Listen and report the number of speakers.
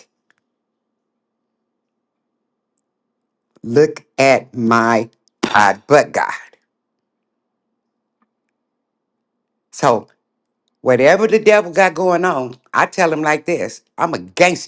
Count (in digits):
1